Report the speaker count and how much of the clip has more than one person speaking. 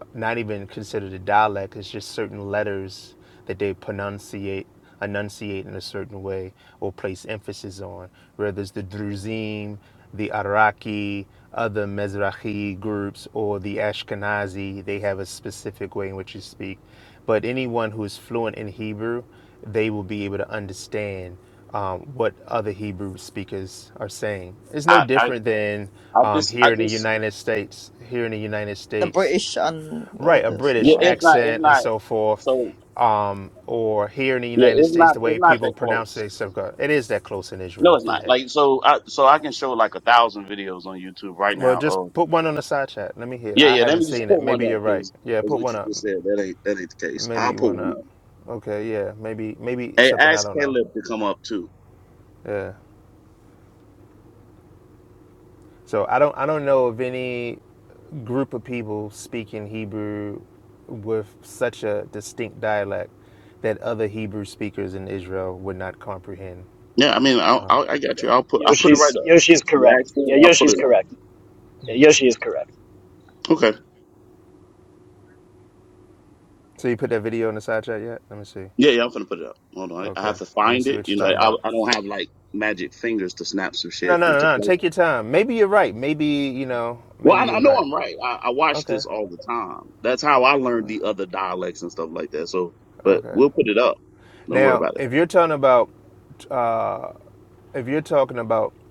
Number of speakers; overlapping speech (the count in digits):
4, about 15%